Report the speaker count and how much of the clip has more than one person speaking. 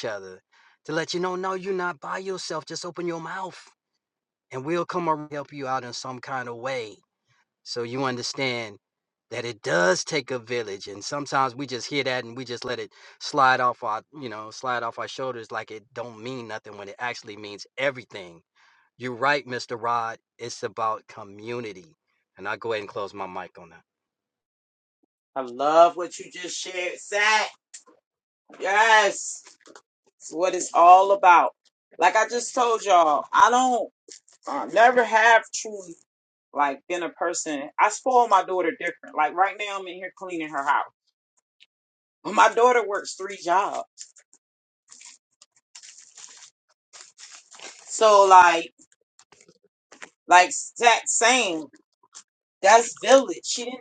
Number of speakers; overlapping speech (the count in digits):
2, no overlap